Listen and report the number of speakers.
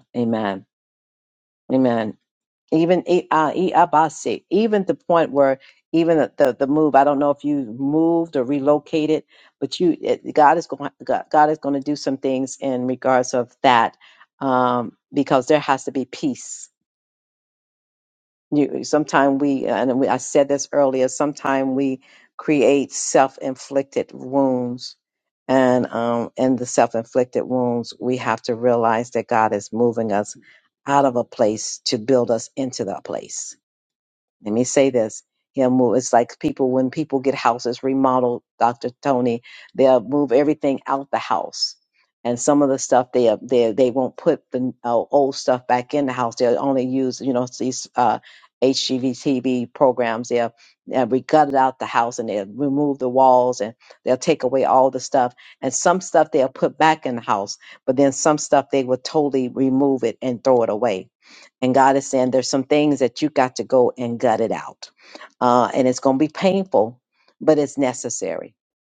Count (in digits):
1